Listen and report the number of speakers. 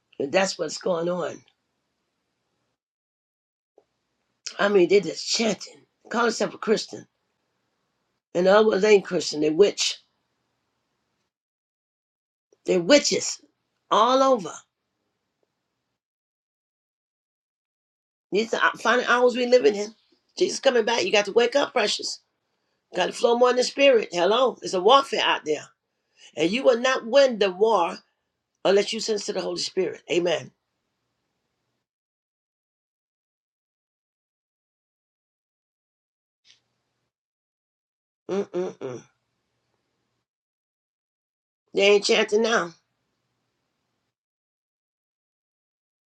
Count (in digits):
1